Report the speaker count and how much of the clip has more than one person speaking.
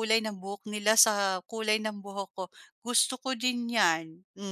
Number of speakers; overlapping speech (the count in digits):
1, no overlap